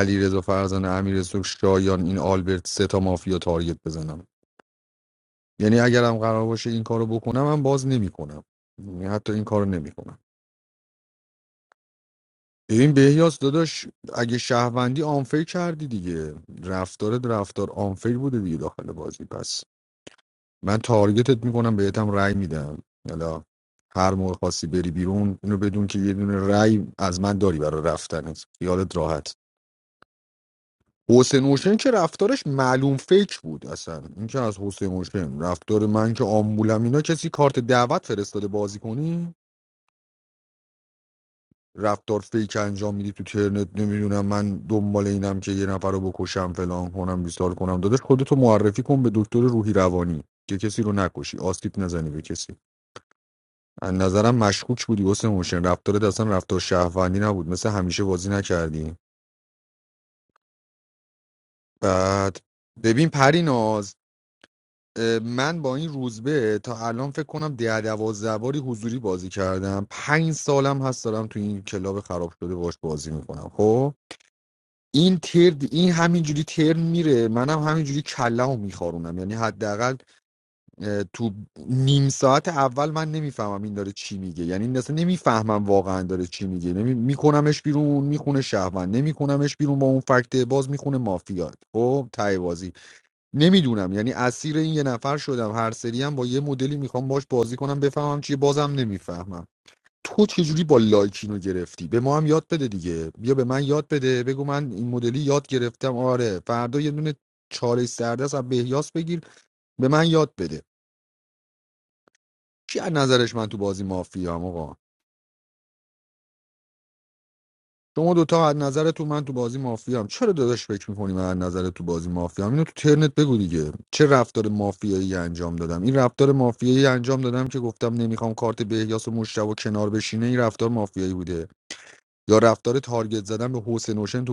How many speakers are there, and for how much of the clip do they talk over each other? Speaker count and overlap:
1, no overlap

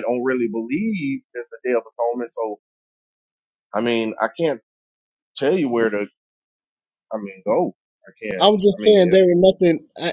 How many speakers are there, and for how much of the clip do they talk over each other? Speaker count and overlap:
2, about 8%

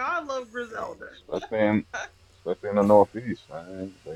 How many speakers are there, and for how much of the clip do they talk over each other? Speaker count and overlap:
2, no overlap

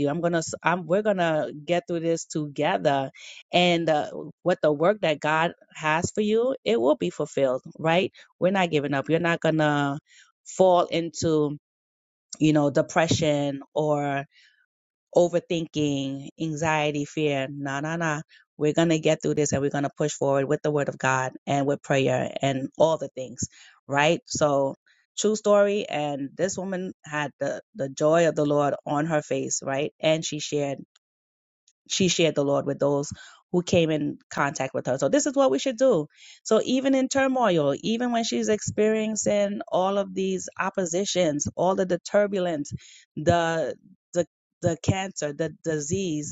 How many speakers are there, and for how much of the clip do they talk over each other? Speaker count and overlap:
1, no overlap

